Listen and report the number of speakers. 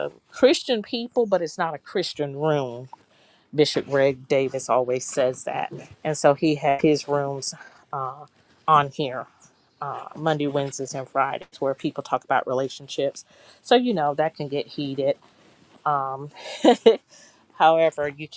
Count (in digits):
1